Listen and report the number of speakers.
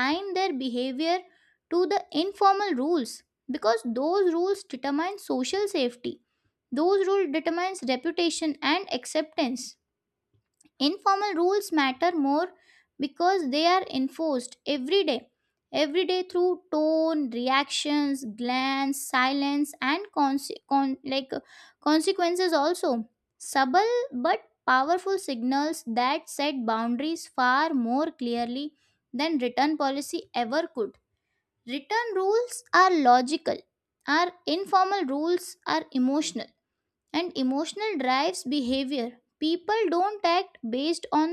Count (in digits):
1